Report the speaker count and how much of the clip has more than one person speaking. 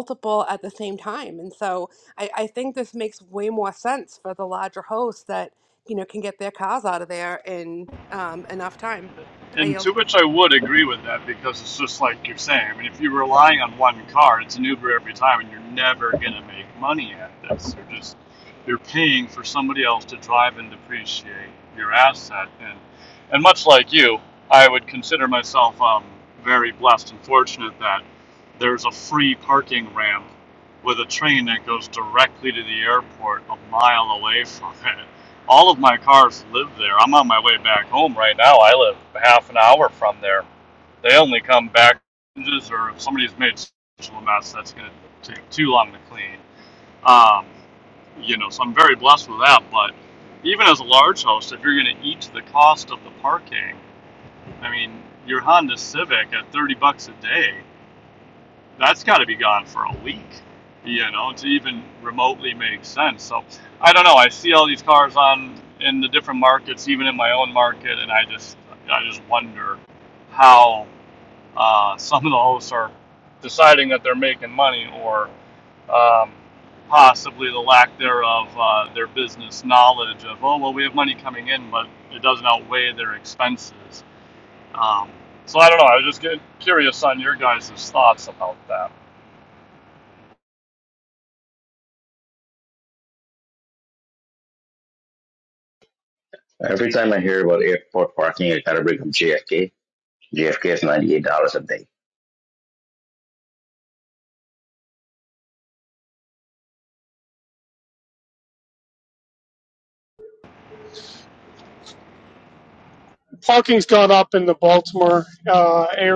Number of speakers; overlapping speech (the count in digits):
4, under 1%